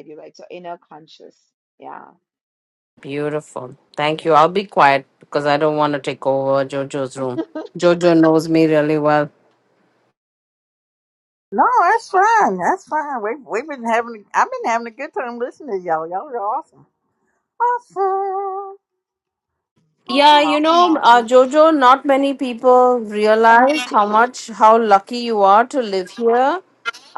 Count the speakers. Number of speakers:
three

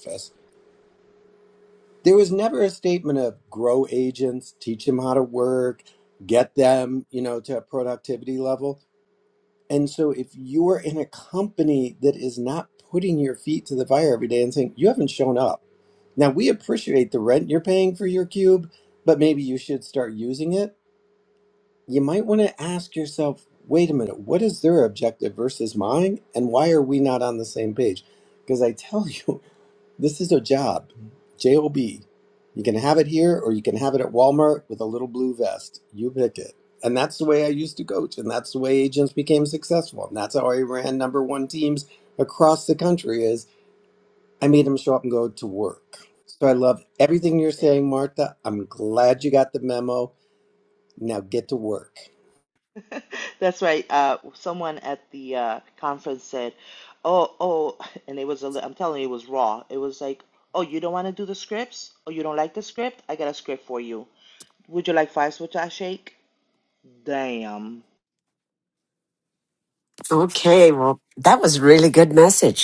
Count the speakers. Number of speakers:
three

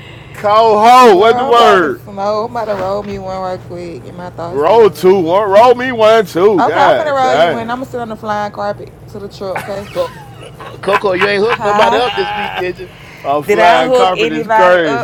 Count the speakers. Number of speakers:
three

